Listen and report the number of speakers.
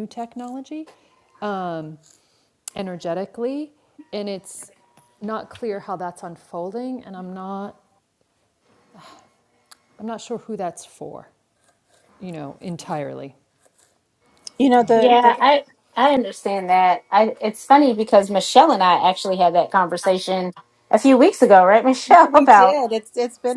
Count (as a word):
three